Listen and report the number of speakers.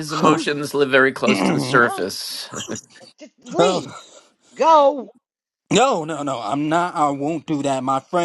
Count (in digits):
3